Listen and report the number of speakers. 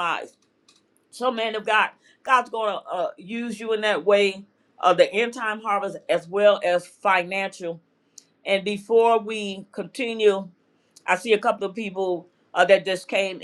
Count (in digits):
1